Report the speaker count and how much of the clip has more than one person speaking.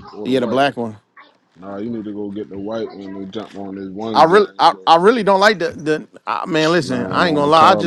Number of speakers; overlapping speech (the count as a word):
two, about 33%